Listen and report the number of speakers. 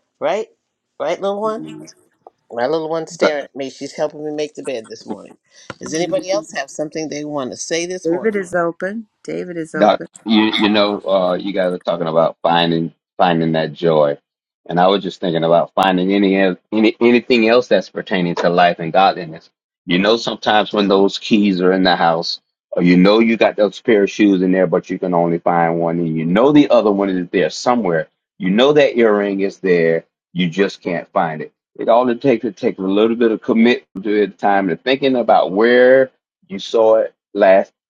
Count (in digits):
3